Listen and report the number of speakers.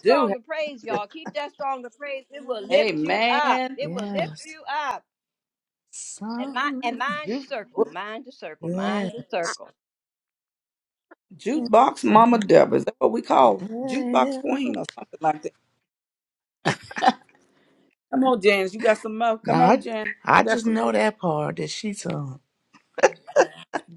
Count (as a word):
three